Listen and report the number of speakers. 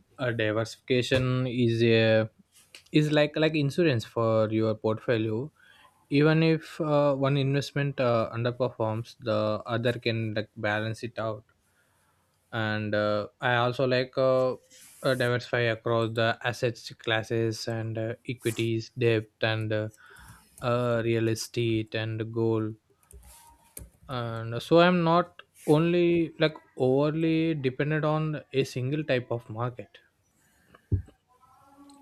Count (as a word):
one